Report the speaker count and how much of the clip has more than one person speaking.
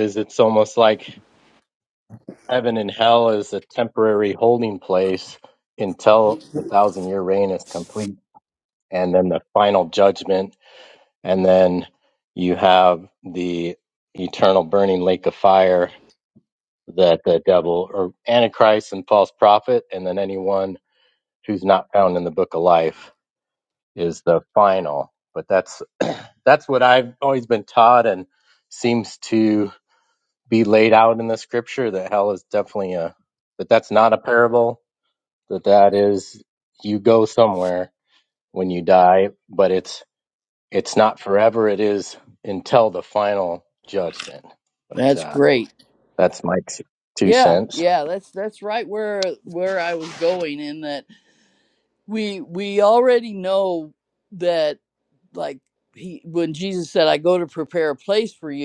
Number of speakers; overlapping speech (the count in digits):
2, about 2%